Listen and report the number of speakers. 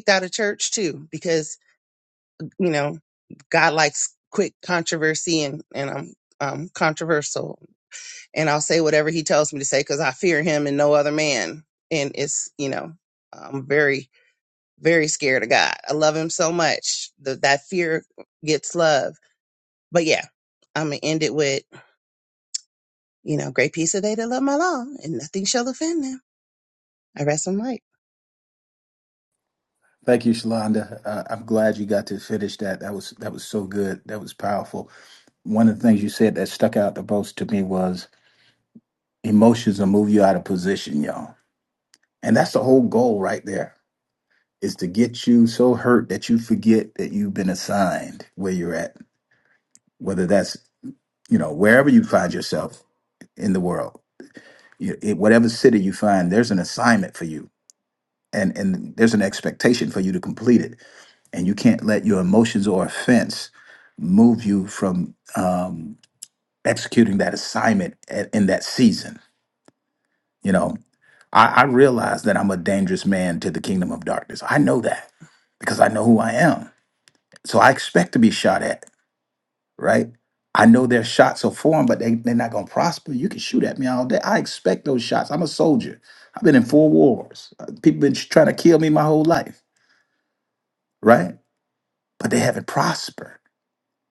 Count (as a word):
two